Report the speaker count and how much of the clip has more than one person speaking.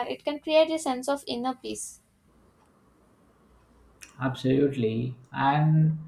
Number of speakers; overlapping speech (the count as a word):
two, no overlap